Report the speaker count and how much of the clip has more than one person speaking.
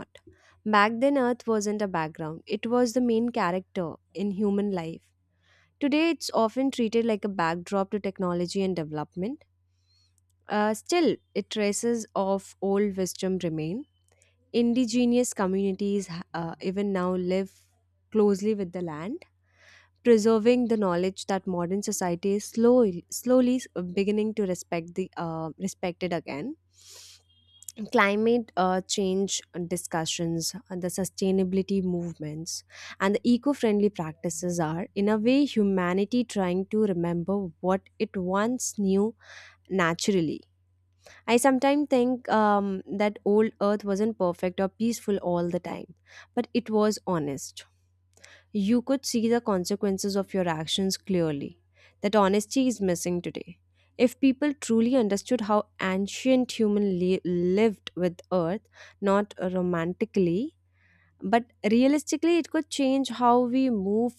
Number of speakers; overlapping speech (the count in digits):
1, no overlap